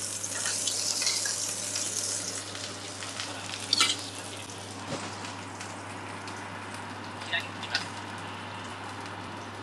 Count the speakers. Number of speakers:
zero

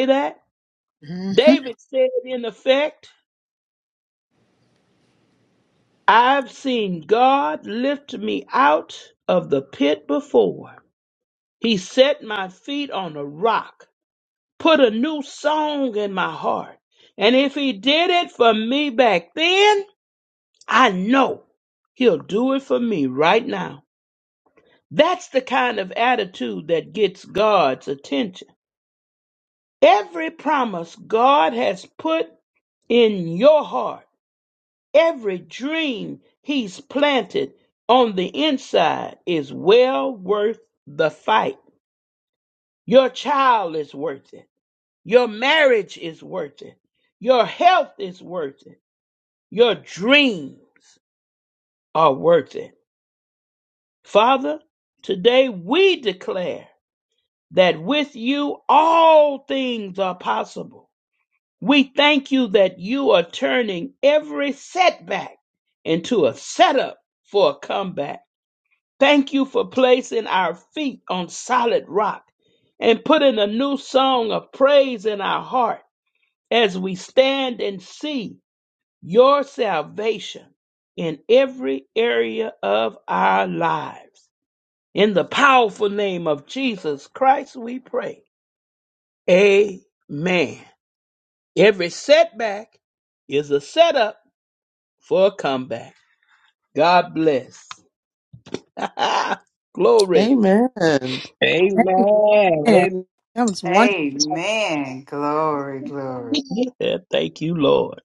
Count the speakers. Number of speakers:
five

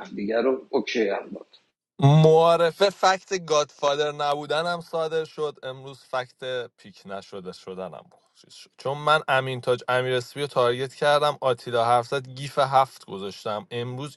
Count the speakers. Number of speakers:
two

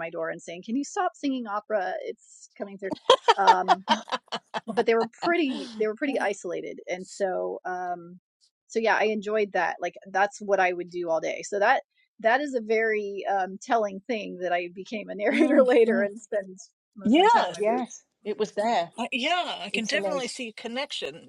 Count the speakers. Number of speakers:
three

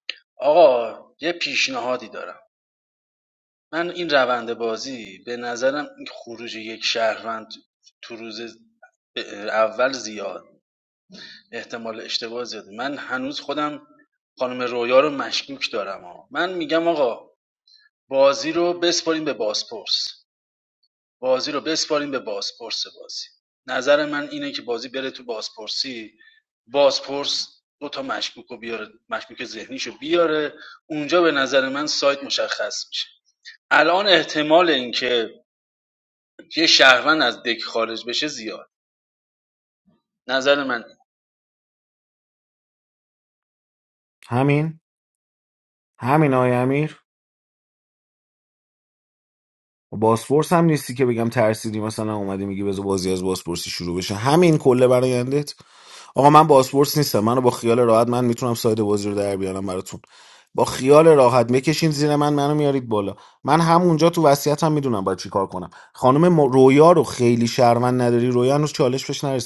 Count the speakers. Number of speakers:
two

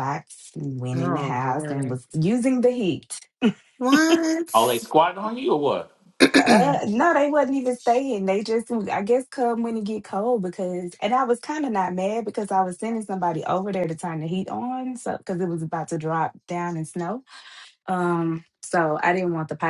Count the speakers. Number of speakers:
three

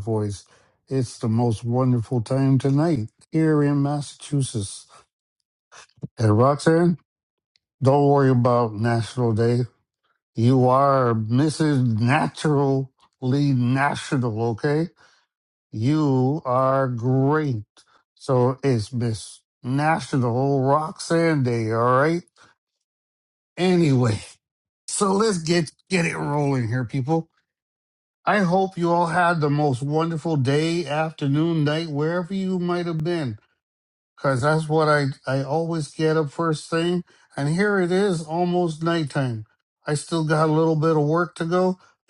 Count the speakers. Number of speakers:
one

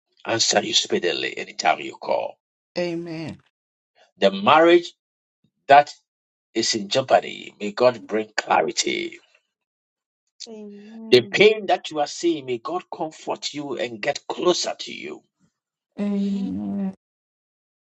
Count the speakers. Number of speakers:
three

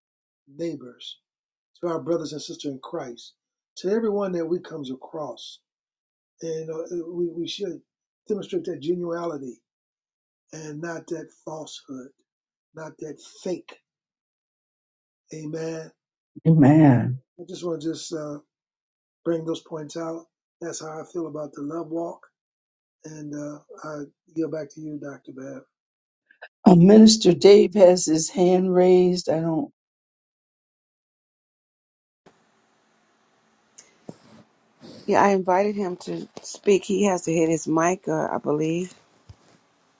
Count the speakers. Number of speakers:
three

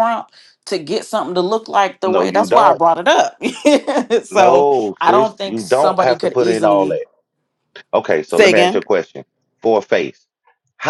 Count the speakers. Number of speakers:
two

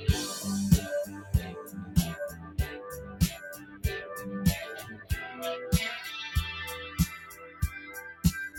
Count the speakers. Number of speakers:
zero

